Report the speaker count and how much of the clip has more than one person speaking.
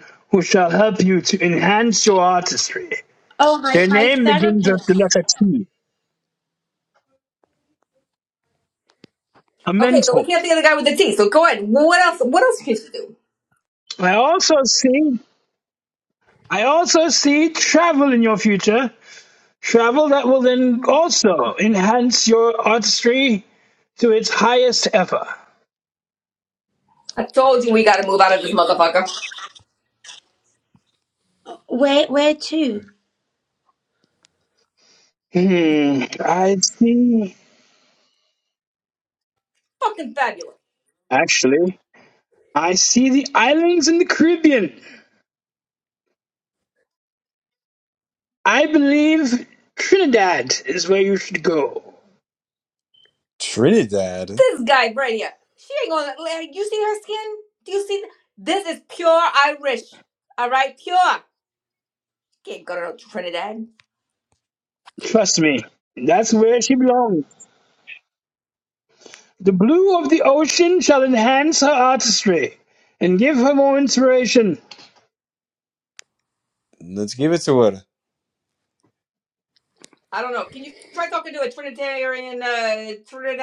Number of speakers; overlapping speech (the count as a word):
four, about 2%